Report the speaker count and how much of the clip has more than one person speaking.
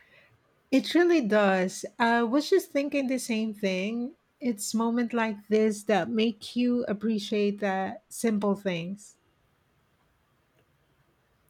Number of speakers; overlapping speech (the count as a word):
one, no overlap